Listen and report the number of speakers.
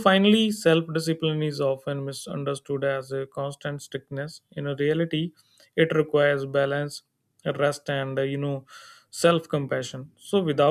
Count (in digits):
1